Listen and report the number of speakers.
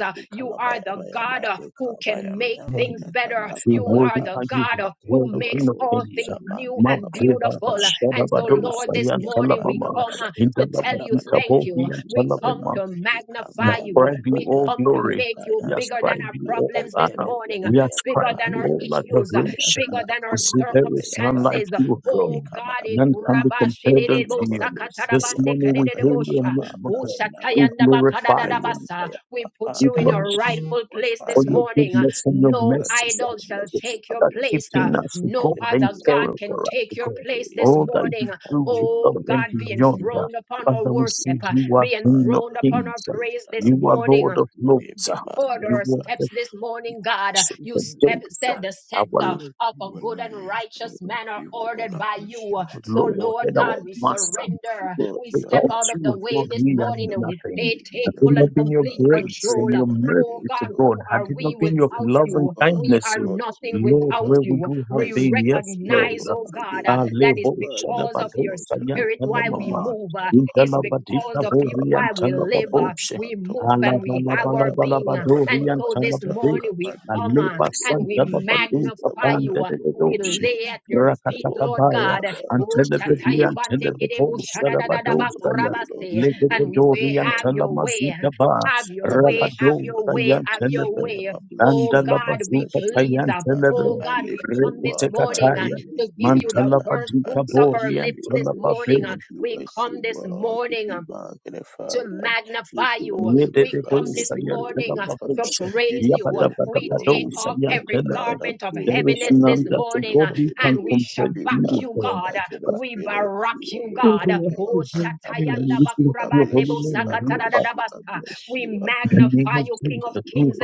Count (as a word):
three